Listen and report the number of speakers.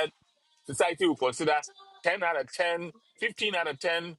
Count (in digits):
1